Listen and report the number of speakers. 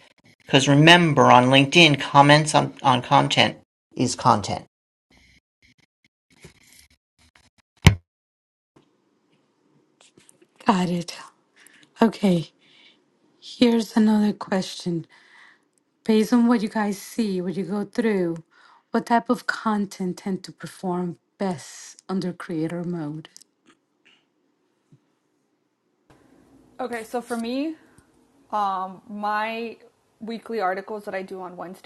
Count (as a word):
three